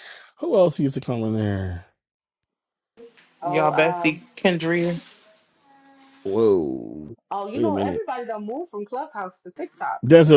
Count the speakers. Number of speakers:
three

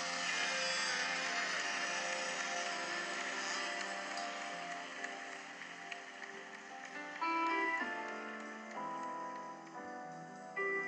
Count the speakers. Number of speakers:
zero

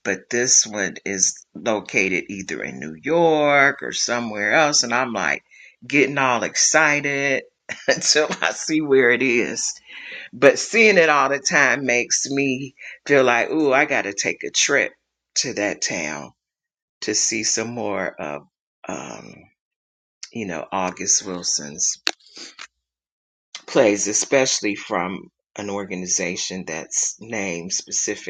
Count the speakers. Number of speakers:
one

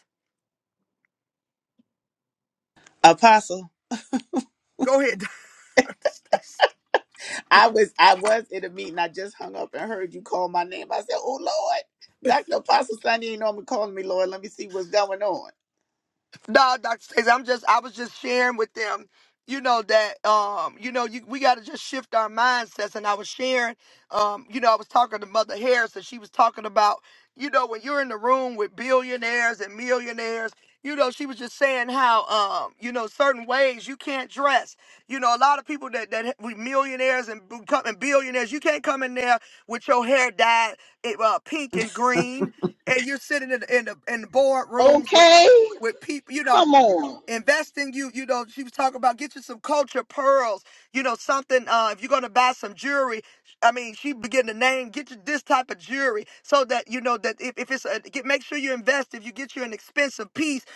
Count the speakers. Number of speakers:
three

